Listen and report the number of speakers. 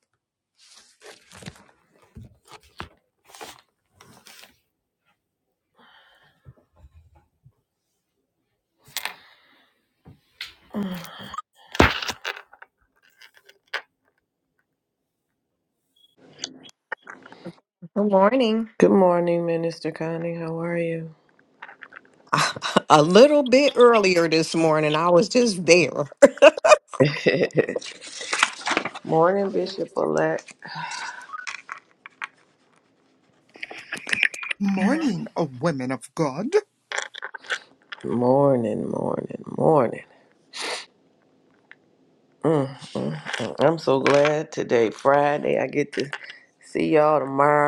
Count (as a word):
three